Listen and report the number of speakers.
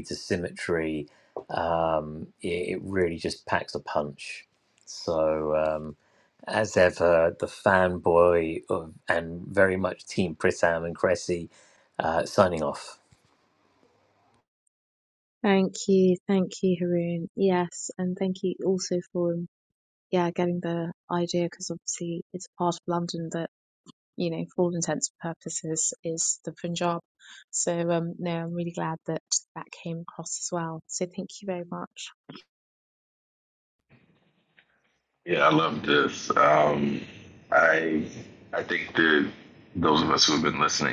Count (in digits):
3